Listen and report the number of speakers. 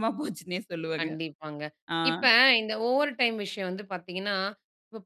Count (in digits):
2